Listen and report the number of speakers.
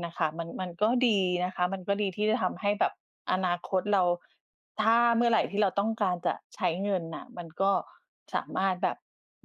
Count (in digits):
1